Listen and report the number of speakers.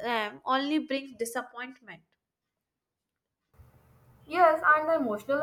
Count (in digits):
2